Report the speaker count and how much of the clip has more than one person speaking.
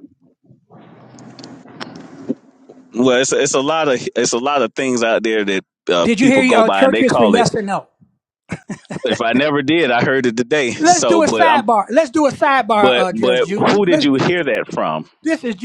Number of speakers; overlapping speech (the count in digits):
2, about 23%